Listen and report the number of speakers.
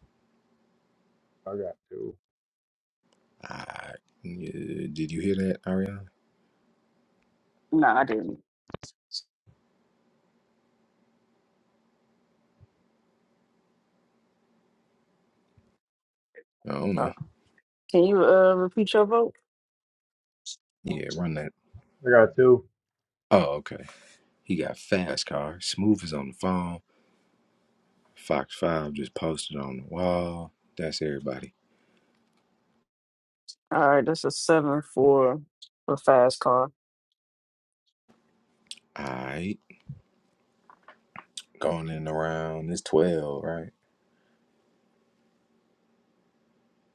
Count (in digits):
3